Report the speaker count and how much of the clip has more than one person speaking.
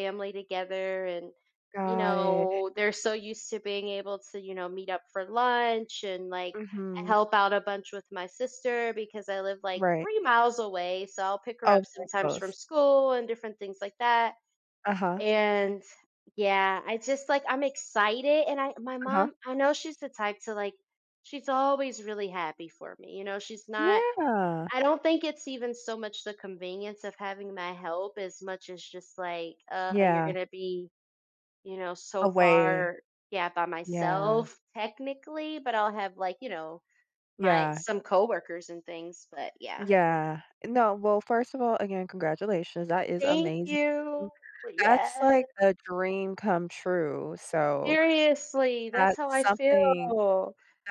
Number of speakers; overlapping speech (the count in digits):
2, about 14%